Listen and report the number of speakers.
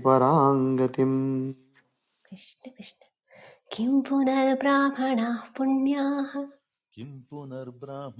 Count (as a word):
three